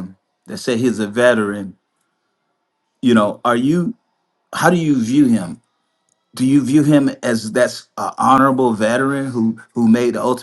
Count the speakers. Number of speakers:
1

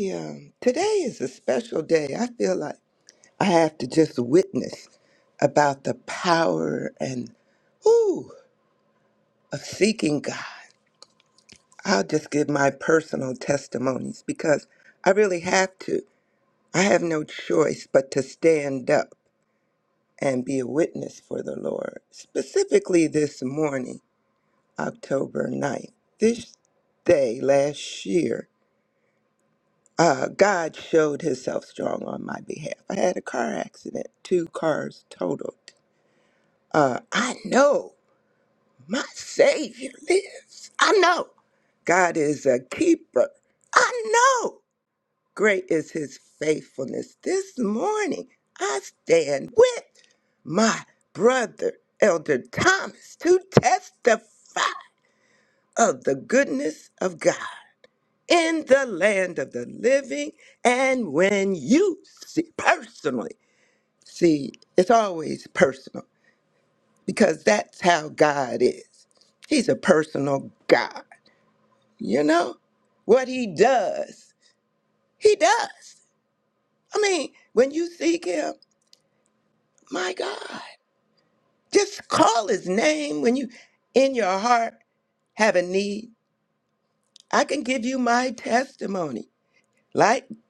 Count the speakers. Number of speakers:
1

